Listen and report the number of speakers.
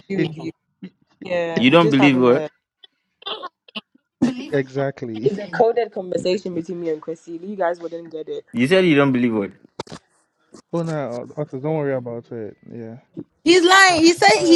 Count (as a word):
four